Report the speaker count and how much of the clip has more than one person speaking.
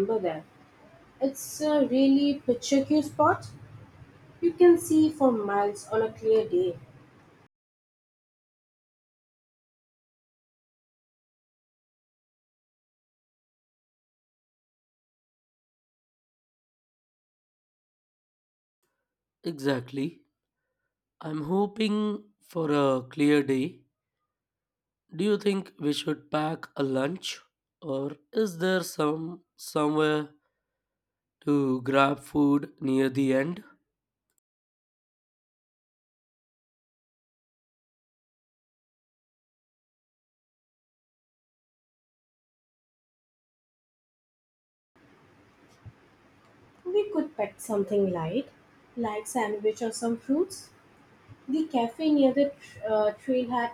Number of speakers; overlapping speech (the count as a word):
two, no overlap